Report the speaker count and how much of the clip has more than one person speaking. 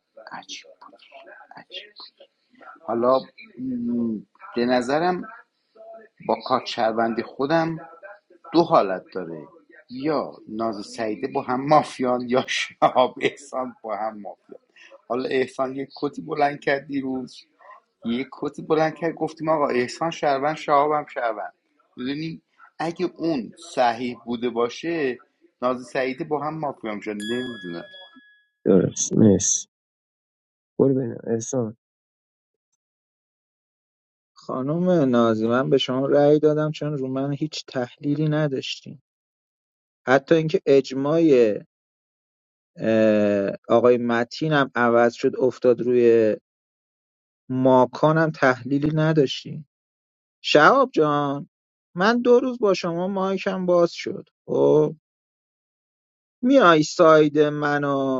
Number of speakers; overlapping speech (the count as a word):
three, no overlap